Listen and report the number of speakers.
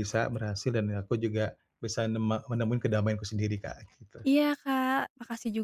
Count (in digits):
2